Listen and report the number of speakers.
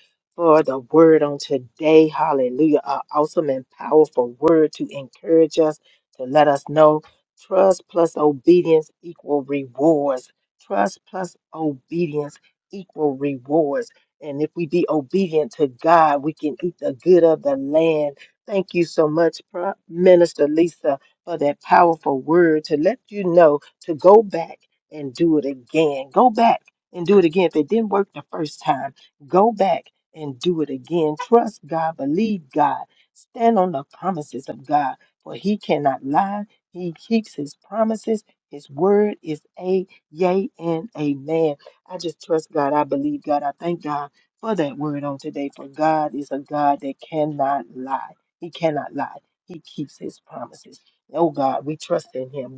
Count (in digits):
1